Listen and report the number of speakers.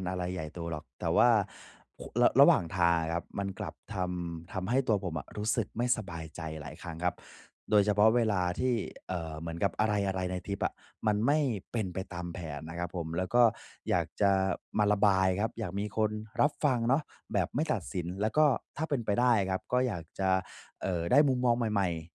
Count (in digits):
1